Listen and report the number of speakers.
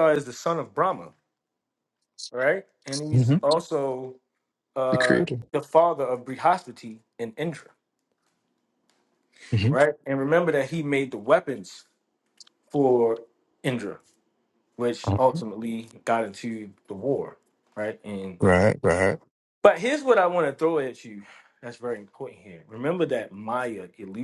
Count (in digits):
2